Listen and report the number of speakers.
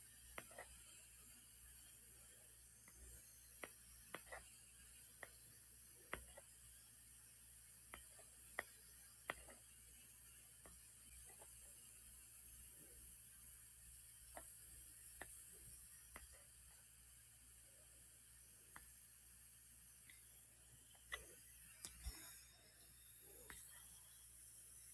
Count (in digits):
0